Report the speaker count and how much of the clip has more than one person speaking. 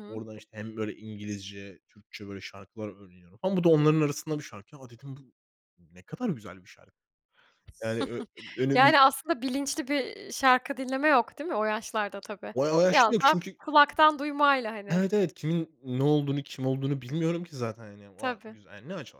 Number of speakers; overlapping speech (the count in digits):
2, about 8%